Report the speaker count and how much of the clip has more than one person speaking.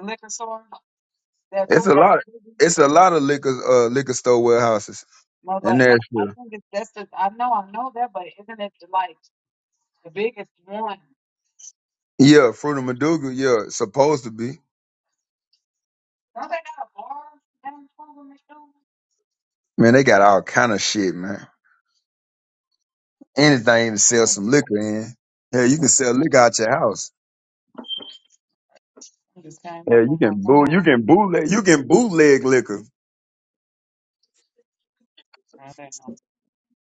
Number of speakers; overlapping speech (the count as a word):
two, about 5%